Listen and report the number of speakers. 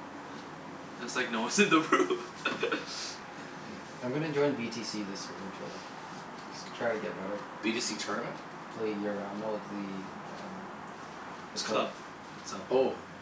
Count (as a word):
three